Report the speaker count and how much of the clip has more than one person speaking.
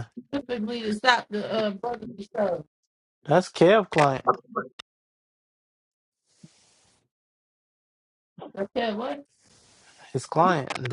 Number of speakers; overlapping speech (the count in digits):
2, no overlap